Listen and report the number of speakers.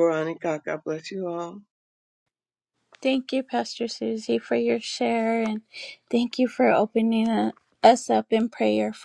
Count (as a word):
two